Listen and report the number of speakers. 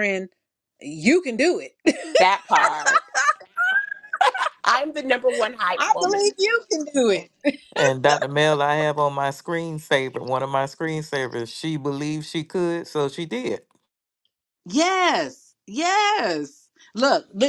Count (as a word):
three